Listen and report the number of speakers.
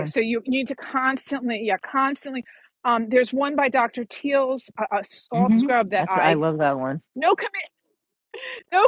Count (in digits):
2